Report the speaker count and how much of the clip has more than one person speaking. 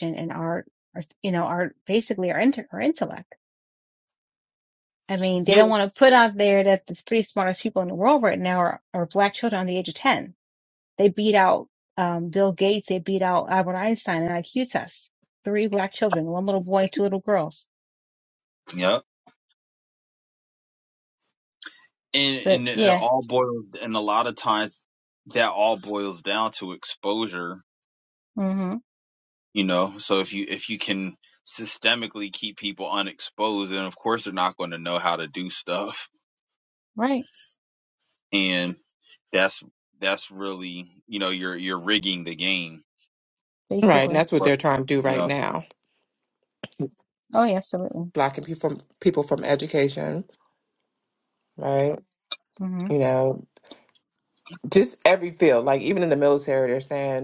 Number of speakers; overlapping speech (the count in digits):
3, about 3%